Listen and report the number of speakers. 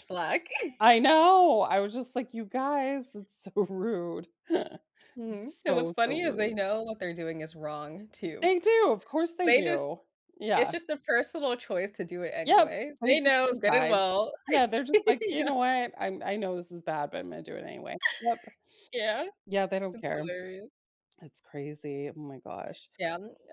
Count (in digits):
2